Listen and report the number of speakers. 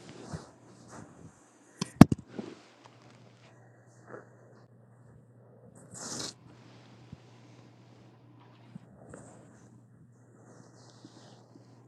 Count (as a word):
zero